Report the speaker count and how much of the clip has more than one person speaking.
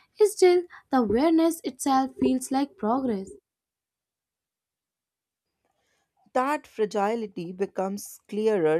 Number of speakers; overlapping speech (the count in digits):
2, no overlap